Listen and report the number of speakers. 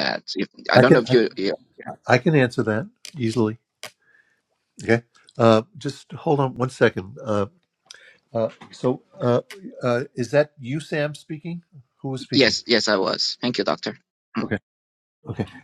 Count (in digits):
2